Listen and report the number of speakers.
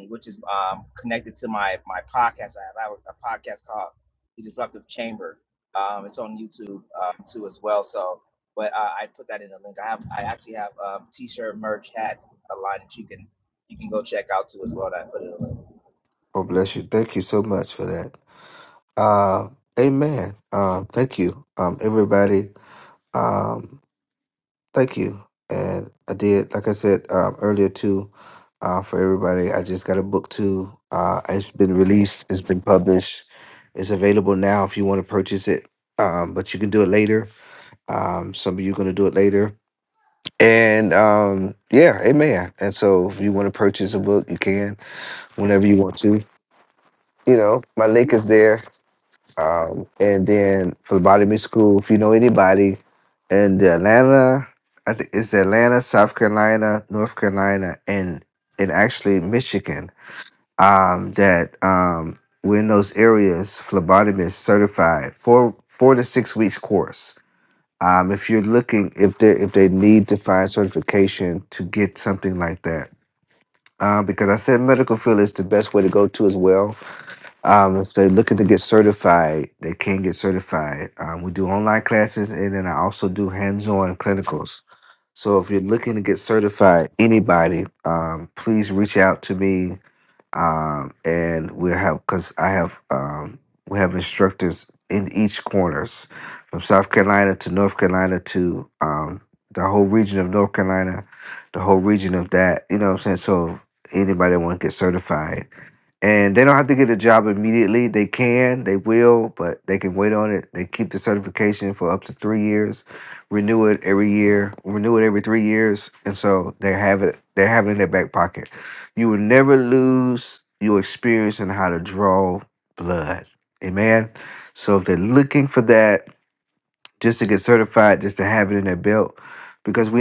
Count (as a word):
two